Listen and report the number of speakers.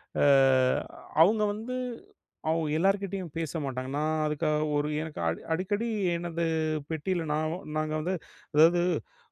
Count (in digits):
1